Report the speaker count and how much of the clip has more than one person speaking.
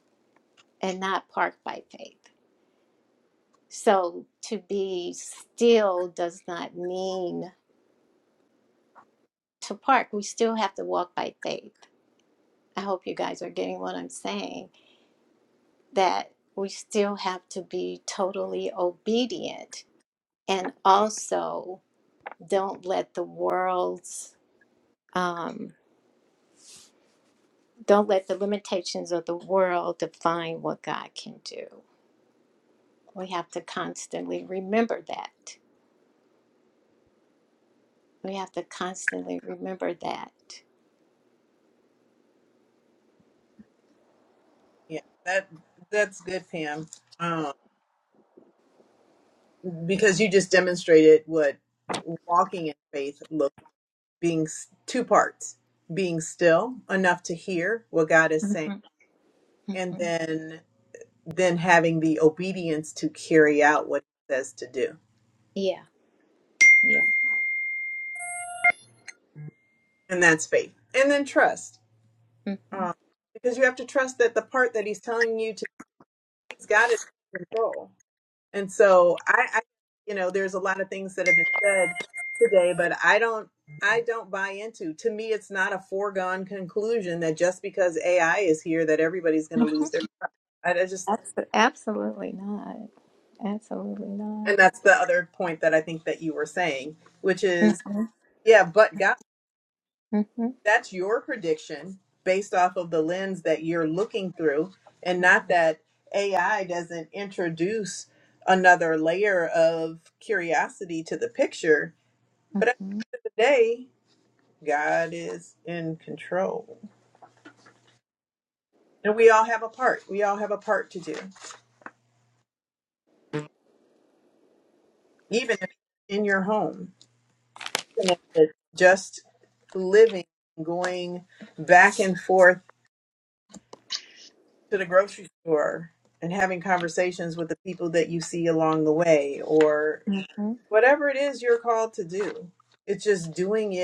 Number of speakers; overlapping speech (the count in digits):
2, about 1%